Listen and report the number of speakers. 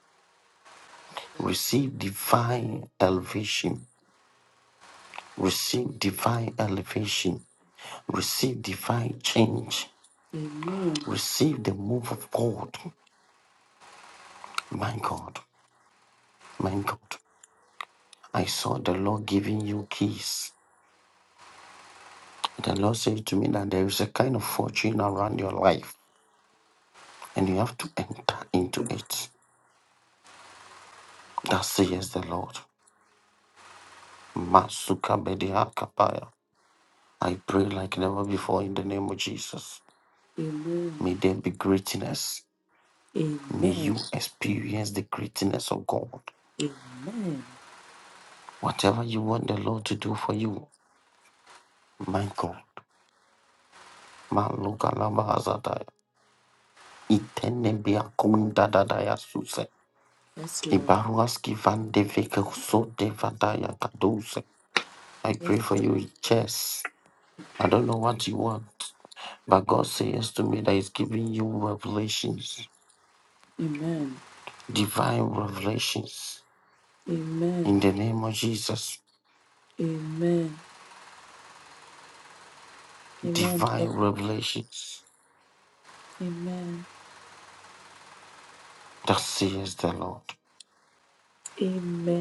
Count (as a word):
two